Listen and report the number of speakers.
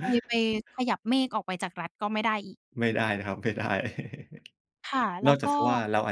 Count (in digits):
2